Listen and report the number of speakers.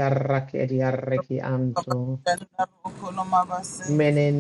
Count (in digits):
2